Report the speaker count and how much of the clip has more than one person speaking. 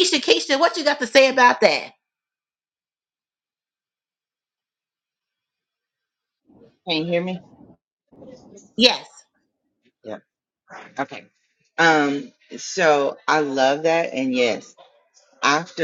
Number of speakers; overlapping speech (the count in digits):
2, no overlap